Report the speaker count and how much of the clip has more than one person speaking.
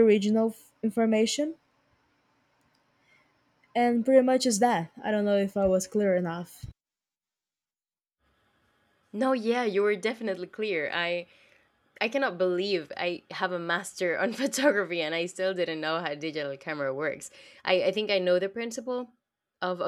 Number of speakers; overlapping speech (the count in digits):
2, no overlap